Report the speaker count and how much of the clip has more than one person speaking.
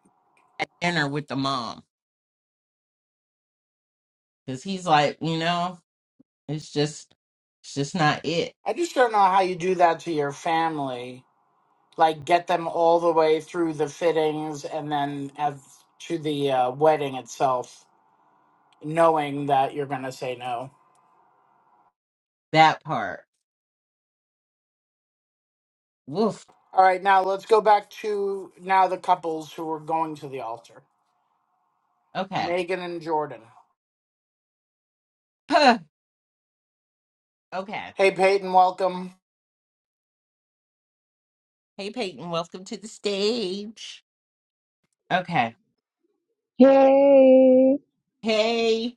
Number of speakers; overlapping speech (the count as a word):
three, under 1%